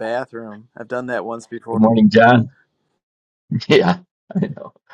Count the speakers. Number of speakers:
two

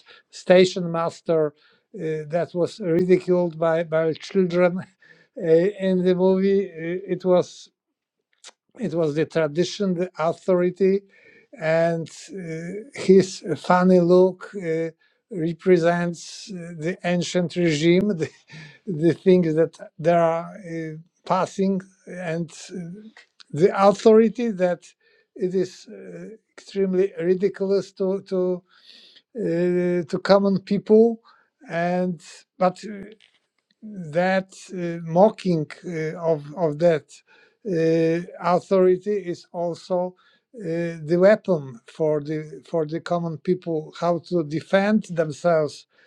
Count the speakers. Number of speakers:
one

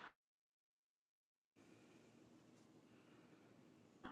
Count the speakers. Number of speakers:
zero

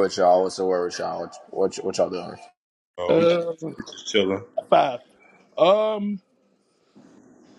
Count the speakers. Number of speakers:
three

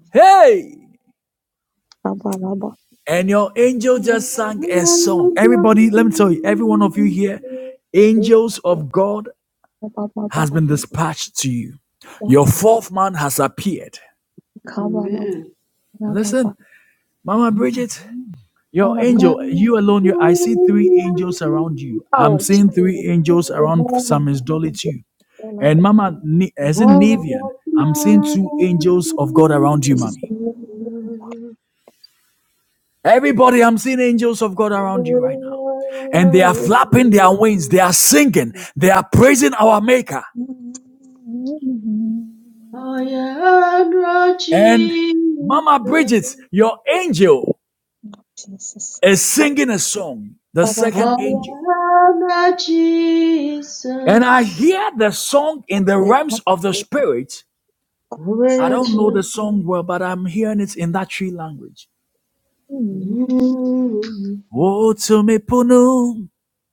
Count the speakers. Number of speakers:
three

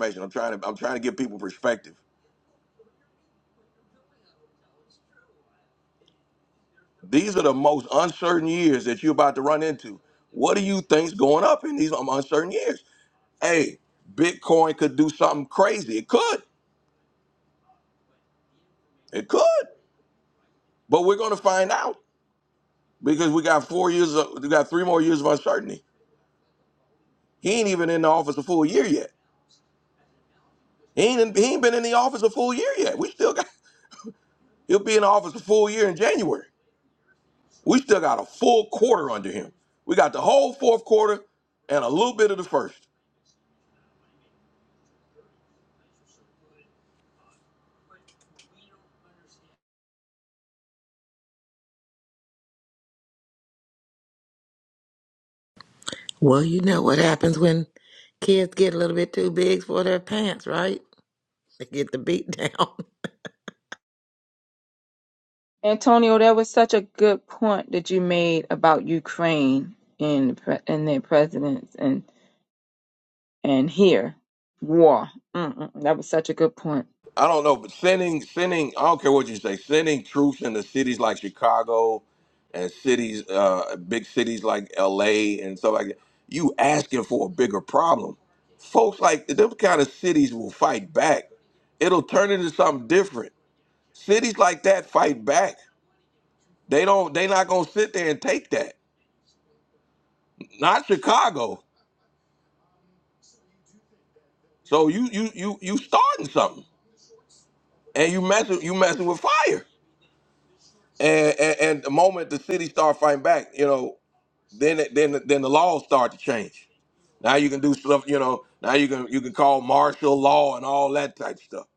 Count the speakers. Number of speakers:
three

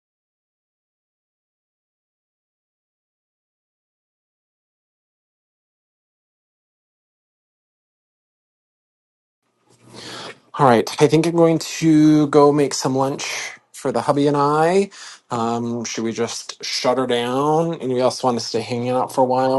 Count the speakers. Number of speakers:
one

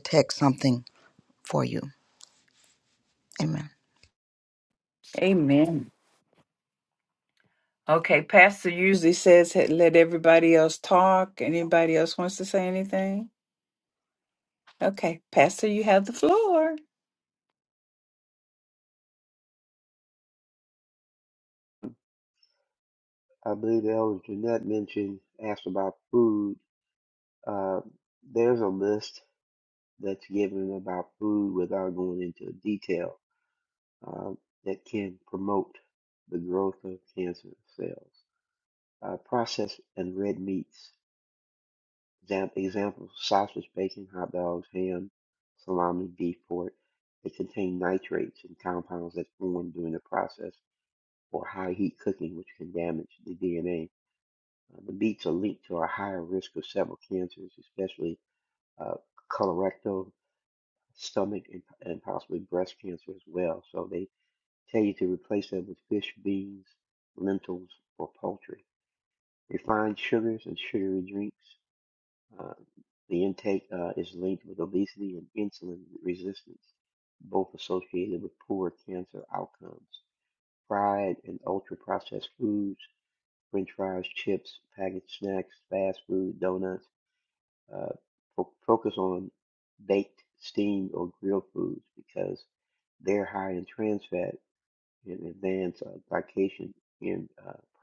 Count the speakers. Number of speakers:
three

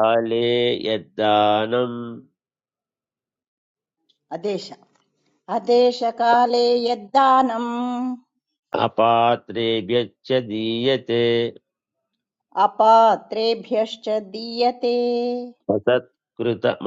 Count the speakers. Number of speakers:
two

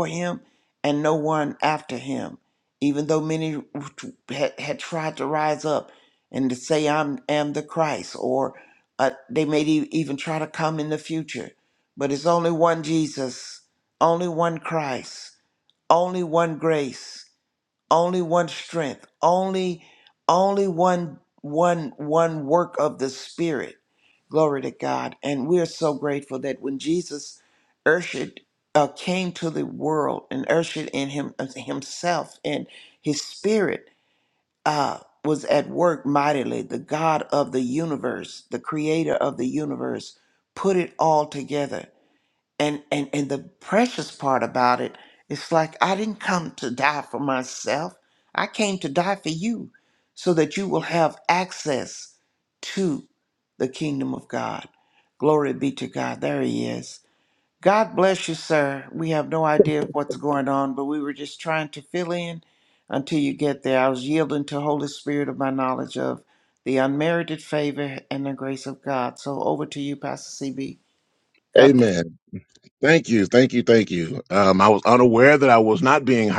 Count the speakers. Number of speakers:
two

